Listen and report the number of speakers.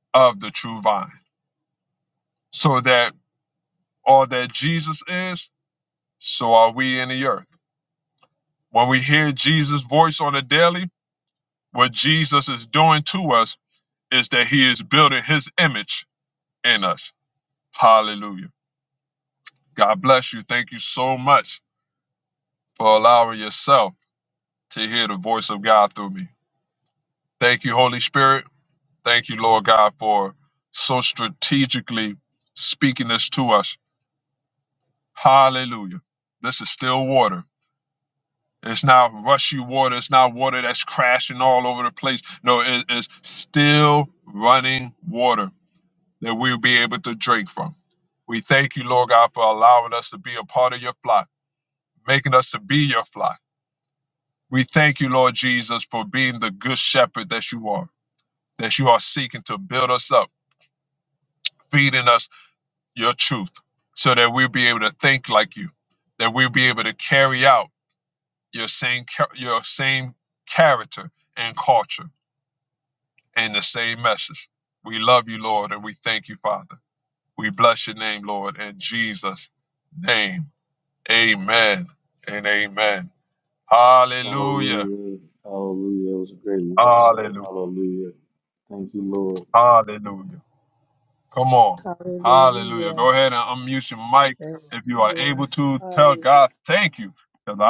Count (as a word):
three